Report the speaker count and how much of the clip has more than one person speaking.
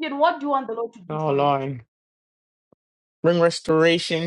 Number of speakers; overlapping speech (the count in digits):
2, about 3%